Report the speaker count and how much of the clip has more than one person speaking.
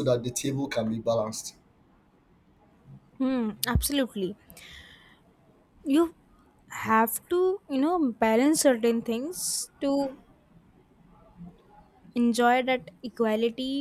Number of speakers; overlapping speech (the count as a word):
two, no overlap